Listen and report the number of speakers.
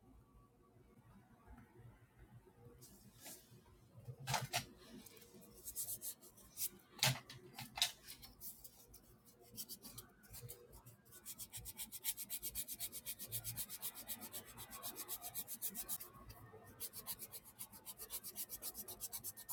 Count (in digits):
0